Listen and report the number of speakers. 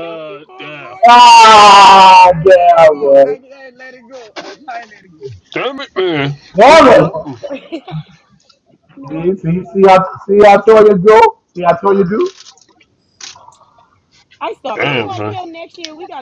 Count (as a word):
three